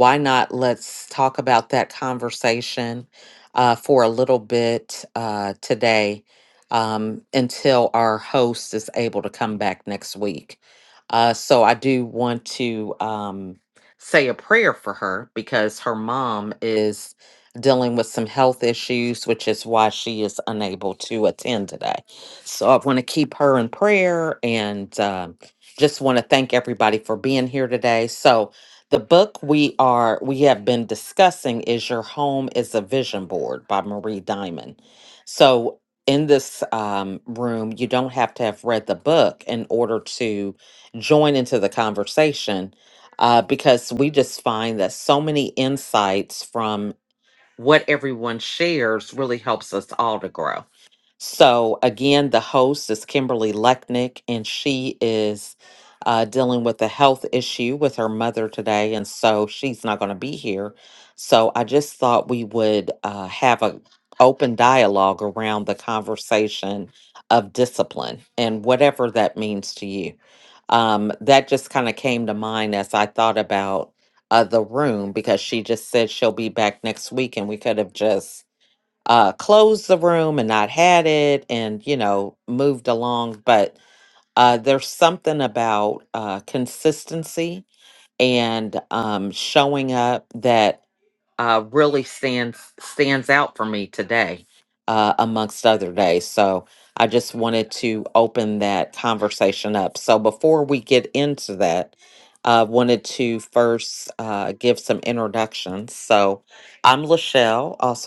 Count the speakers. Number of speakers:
1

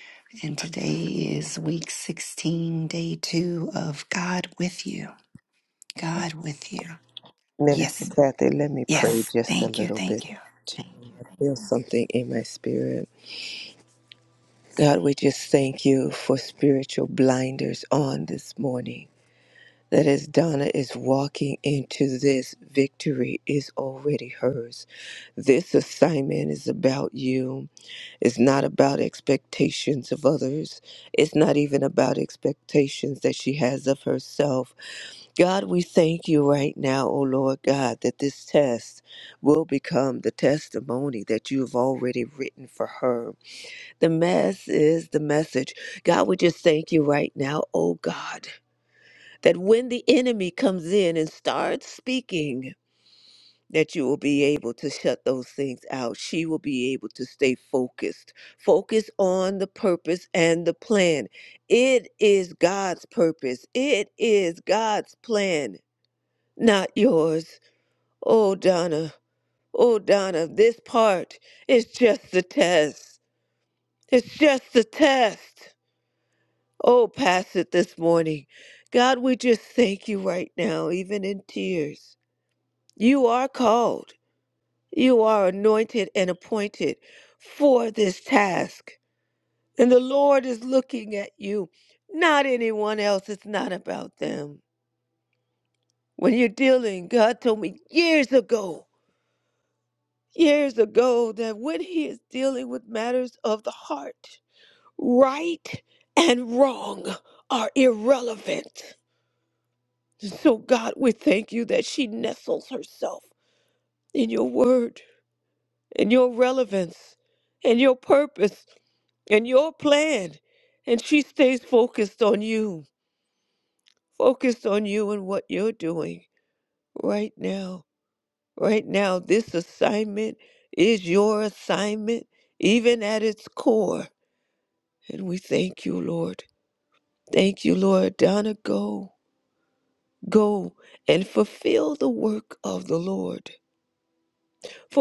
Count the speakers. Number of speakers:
2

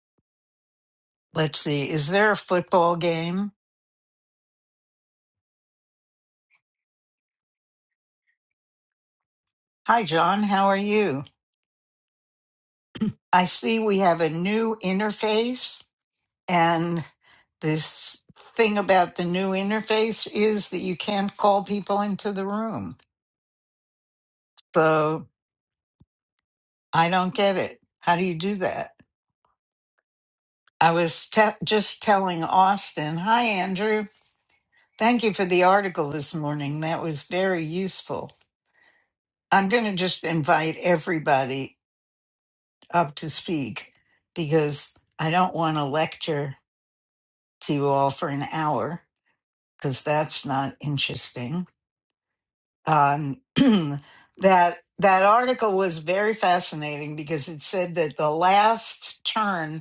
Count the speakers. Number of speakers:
1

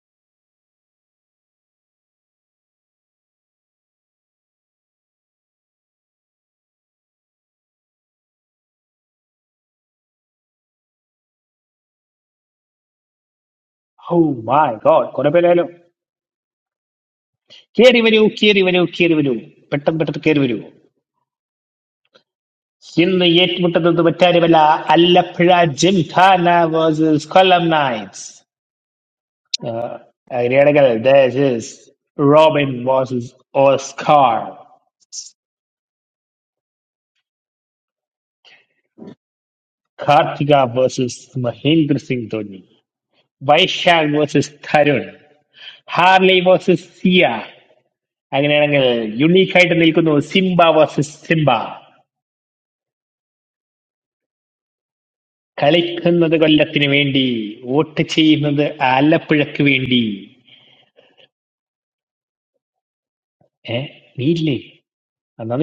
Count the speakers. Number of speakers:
1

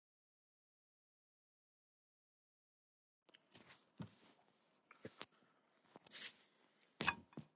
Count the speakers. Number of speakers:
0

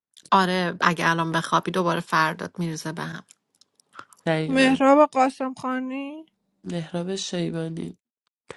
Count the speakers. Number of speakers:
3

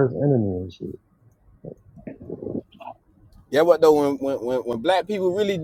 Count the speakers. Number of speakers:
2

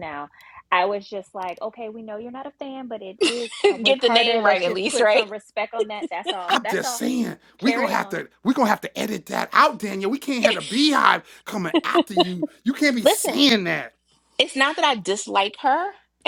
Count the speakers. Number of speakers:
3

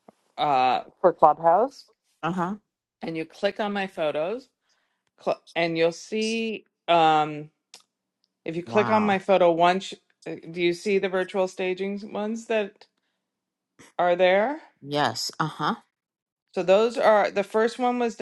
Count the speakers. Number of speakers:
2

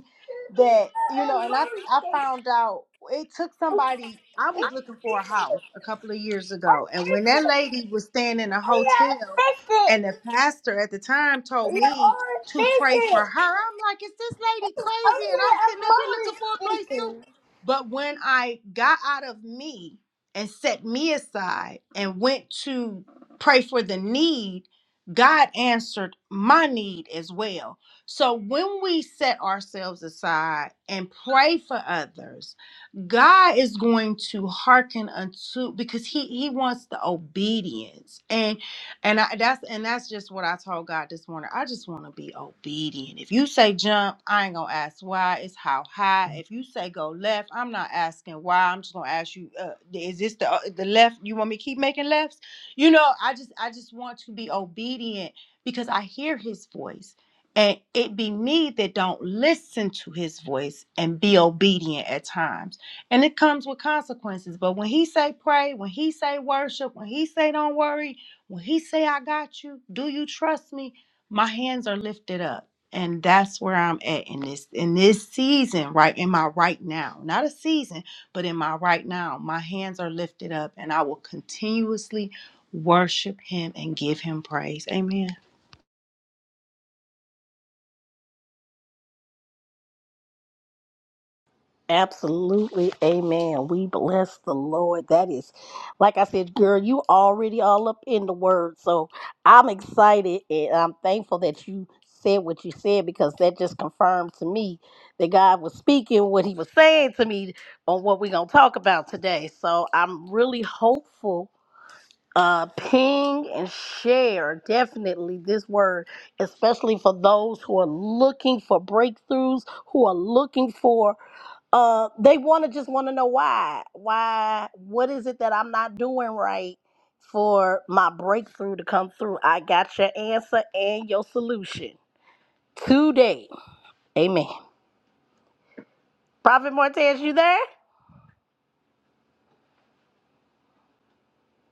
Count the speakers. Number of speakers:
2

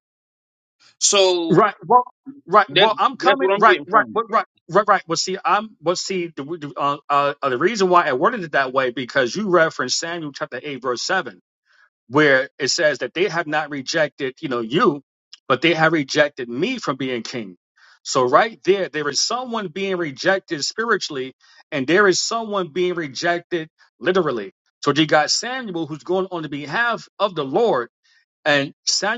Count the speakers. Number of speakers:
2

